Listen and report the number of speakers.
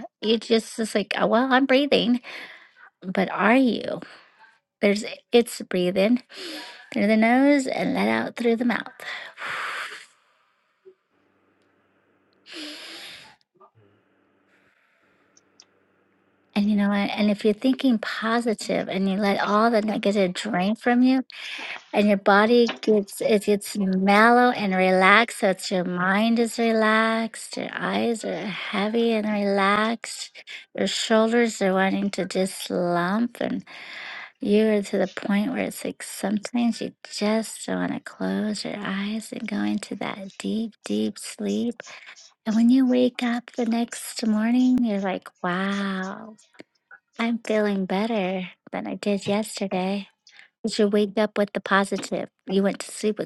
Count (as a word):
one